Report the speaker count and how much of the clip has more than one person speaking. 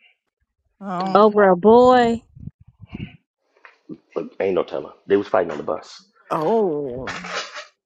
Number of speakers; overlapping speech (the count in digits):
3, about 1%